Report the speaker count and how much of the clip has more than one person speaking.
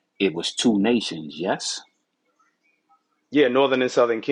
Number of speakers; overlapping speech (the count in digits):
2, no overlap